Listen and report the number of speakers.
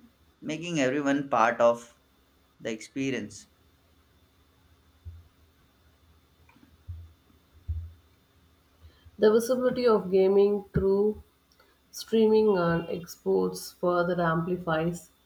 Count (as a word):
two